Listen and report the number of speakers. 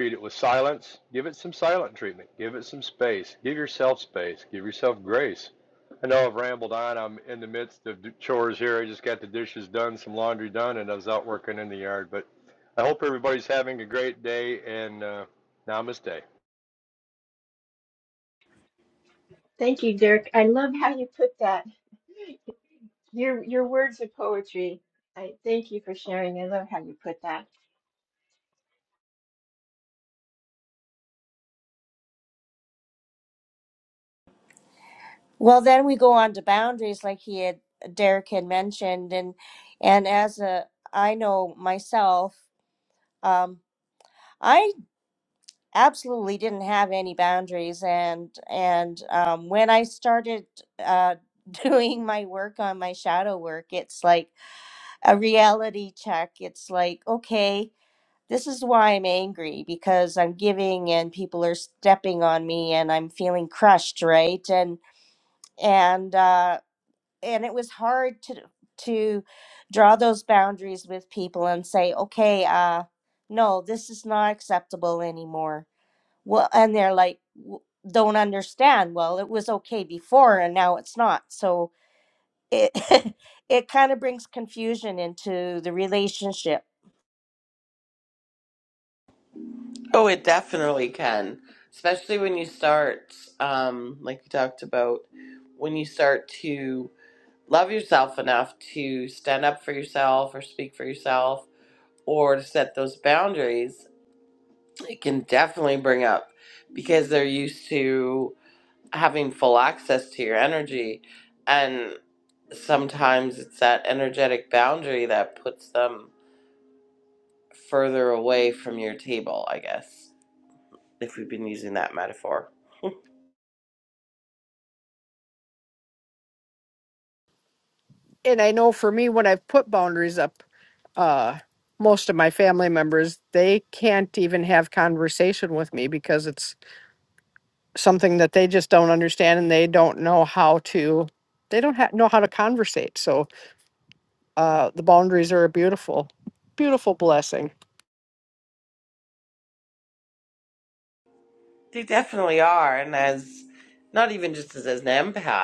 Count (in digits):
5